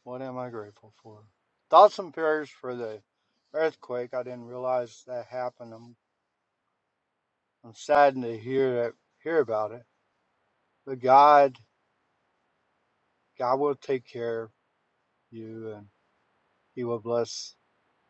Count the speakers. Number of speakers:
one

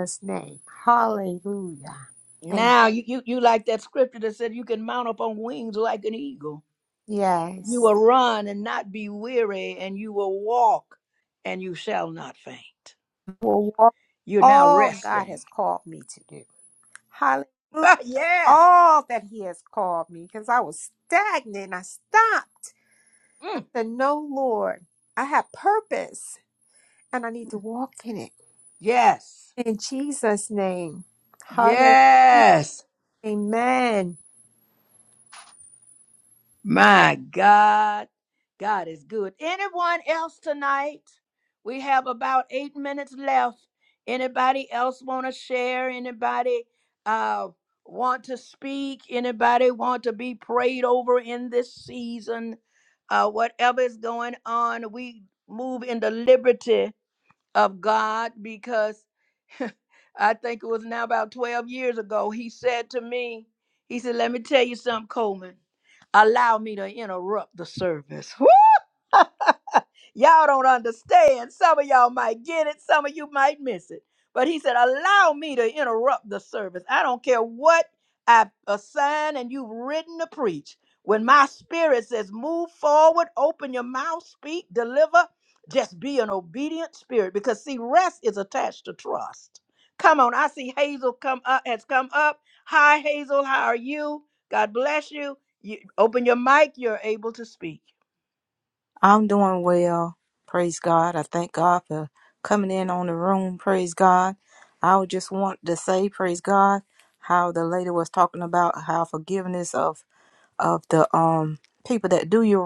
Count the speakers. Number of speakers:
three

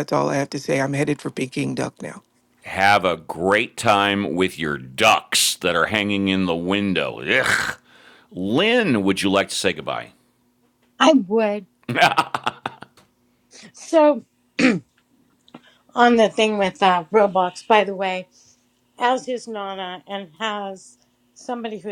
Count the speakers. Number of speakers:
three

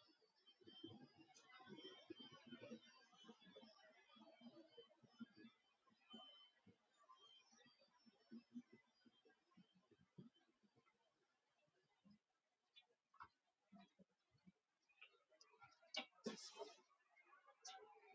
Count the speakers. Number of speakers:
zero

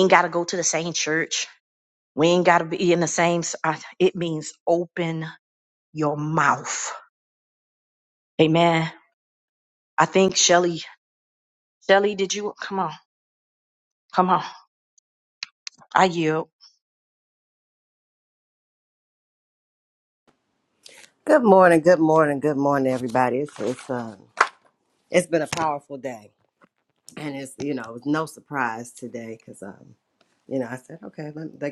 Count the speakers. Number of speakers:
two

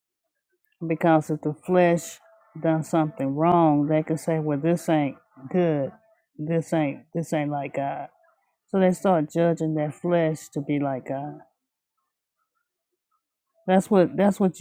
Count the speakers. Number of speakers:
one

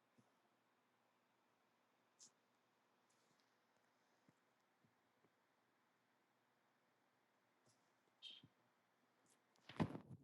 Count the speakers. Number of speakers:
zero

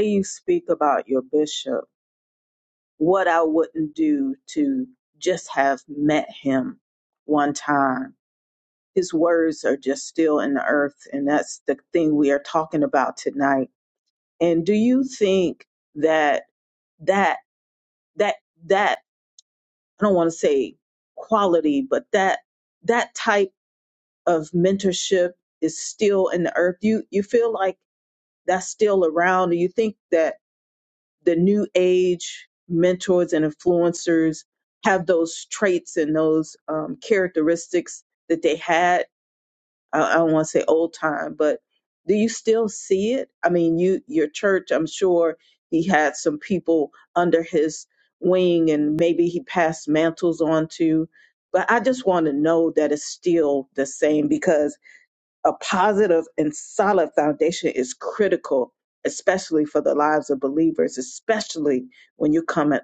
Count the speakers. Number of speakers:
one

